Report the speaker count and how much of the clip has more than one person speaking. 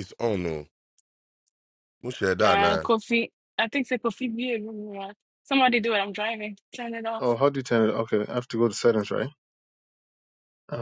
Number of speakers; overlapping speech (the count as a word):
three, about 4%